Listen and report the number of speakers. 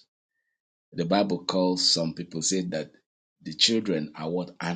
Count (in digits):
1